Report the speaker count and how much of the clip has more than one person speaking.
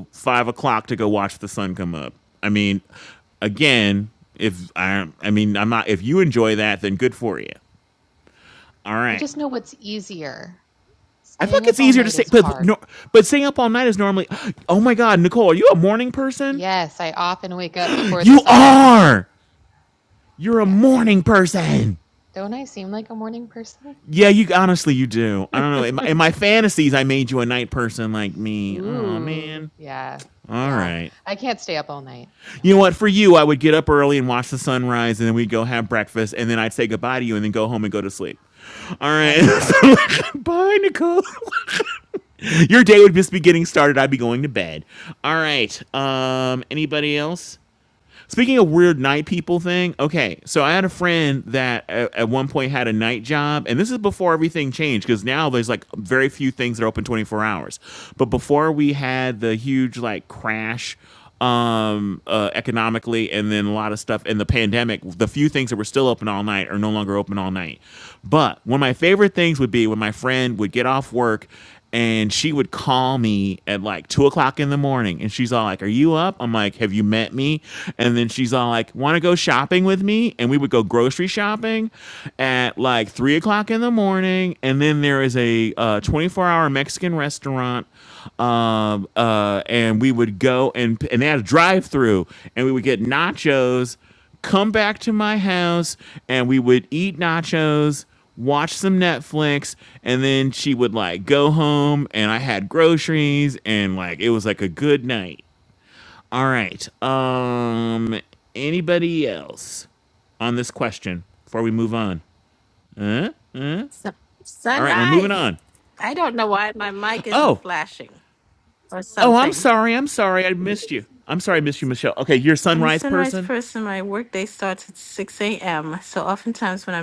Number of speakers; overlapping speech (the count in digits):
3, about 5%